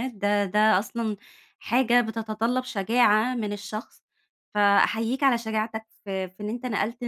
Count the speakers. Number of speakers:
1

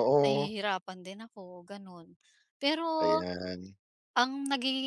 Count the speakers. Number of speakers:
2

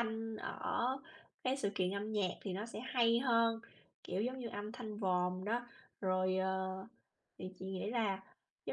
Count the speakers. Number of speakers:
1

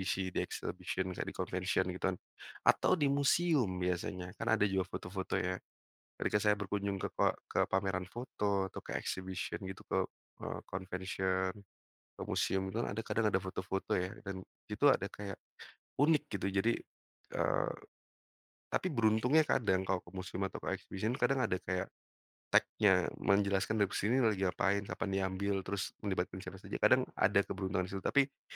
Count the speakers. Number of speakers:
1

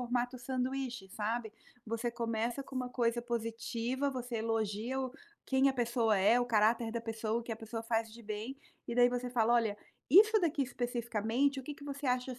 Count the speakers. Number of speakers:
1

